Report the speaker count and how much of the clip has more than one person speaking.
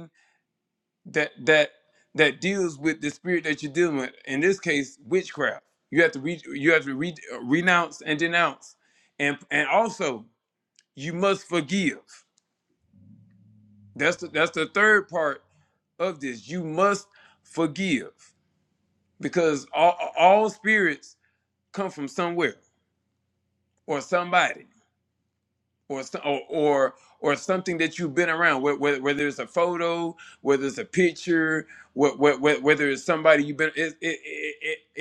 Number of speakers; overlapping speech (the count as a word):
one, no overlap